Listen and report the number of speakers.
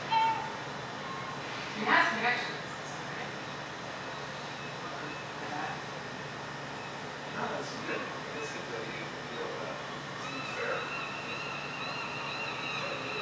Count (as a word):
two